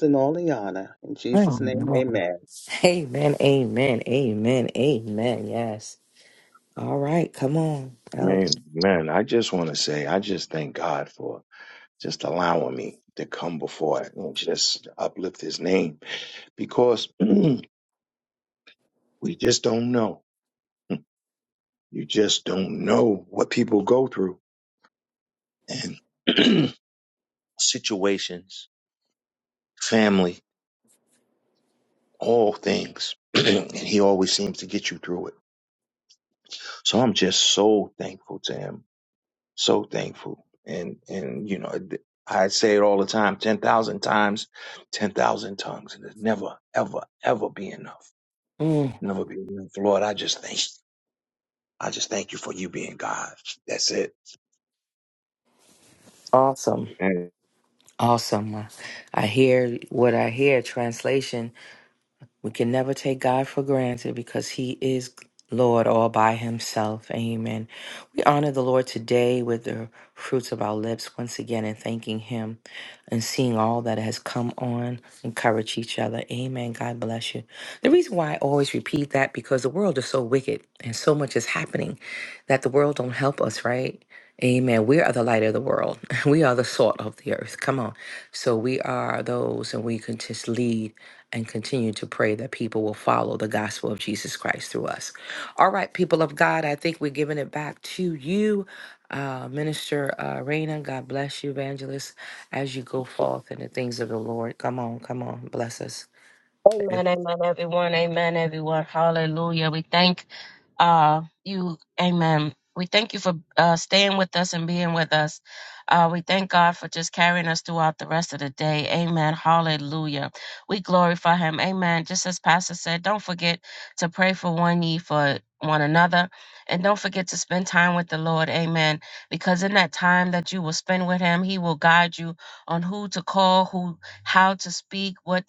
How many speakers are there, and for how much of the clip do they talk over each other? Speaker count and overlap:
4, about 1%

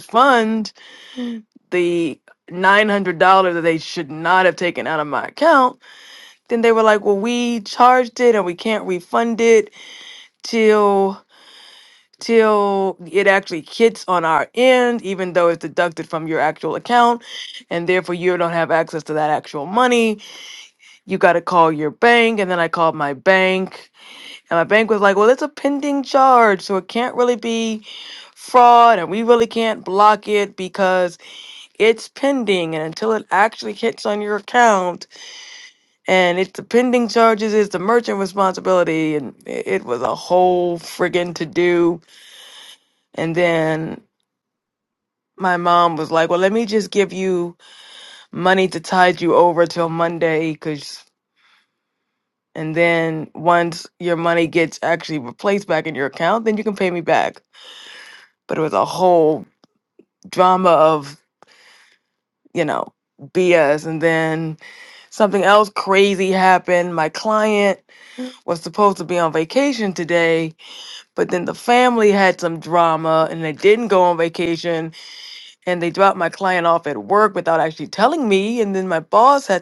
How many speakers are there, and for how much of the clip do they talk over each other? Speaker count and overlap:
1, no overlap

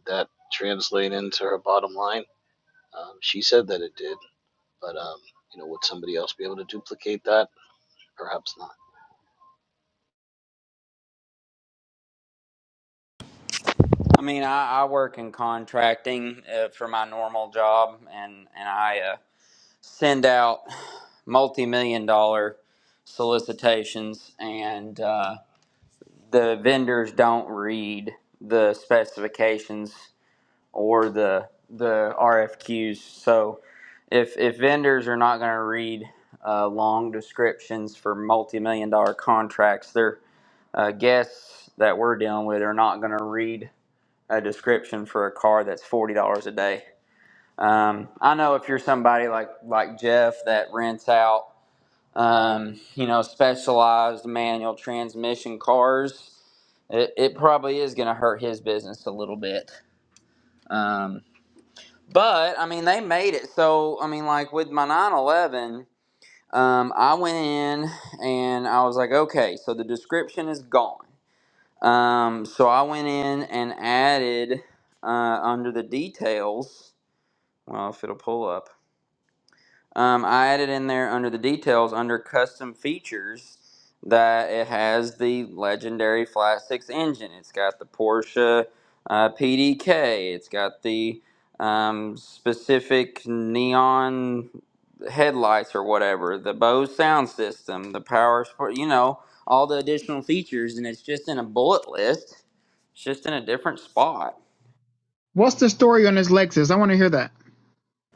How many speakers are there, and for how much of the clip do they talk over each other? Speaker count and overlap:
3, no overlap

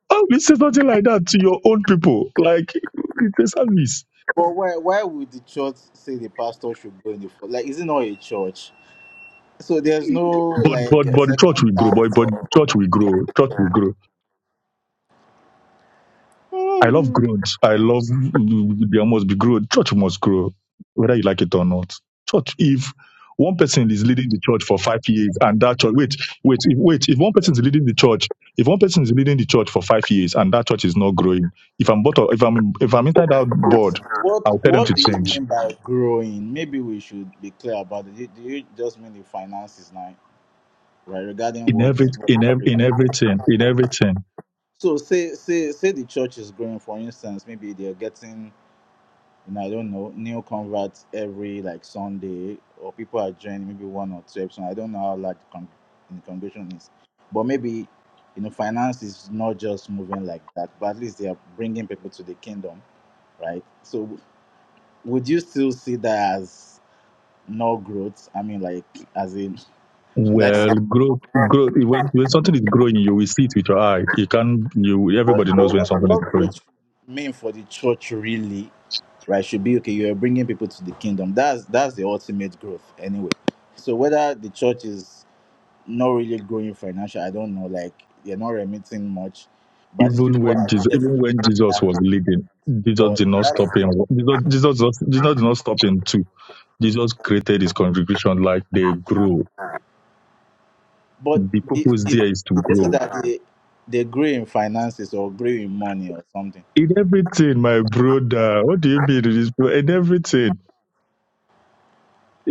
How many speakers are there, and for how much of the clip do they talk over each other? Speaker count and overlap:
2, about 8%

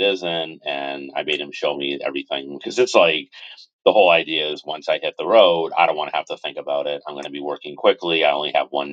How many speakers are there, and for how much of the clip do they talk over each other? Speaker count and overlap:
1, no overlap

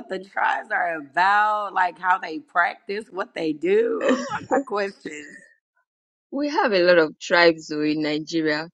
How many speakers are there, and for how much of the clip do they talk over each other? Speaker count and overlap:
2, no overlap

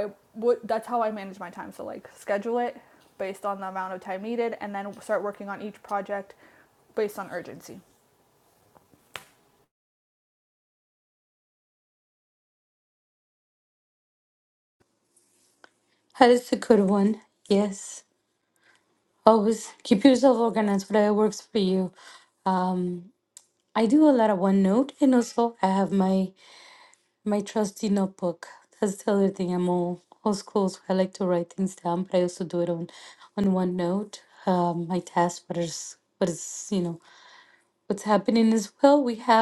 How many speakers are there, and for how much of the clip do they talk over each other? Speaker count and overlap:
2, no overlap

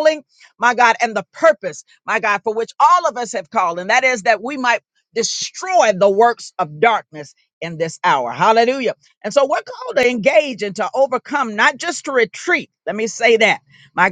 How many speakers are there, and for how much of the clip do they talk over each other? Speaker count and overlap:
1, no overlap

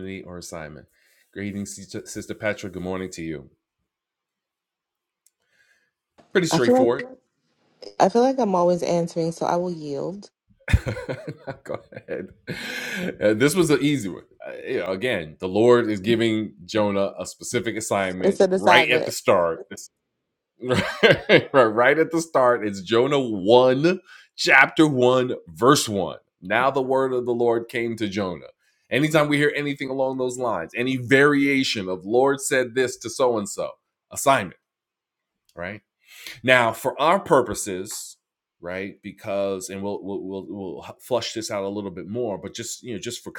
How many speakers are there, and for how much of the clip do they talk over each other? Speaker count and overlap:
2, about 3%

